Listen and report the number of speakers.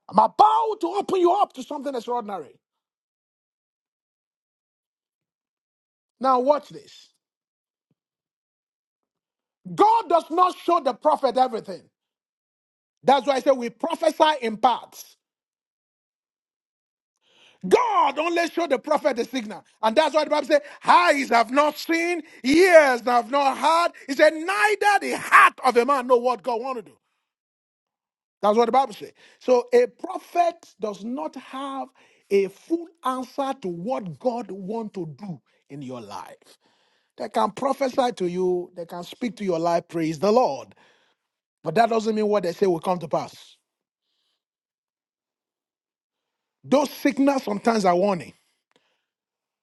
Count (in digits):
1